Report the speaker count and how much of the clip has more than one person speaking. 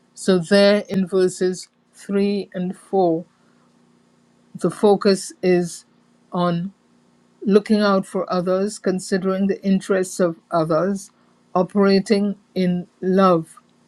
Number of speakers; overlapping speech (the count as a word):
one, no overlap